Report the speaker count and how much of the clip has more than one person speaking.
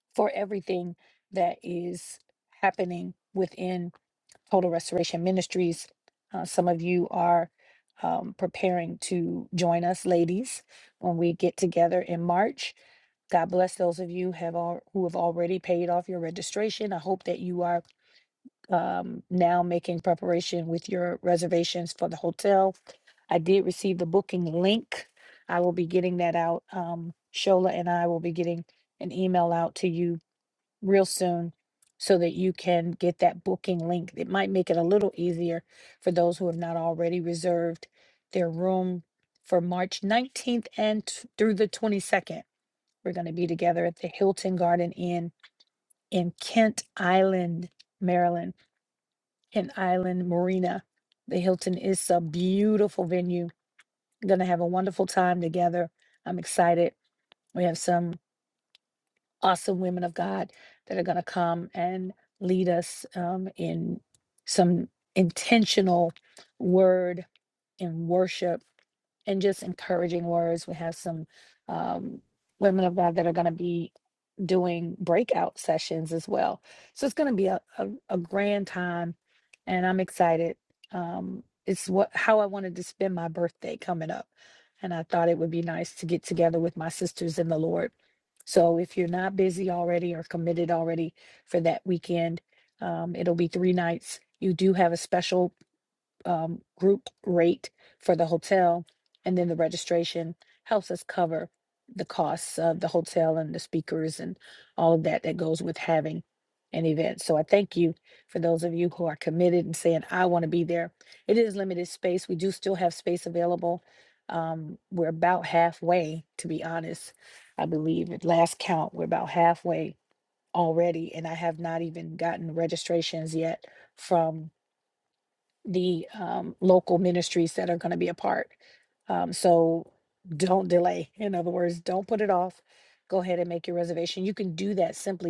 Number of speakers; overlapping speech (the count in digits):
1, no overlap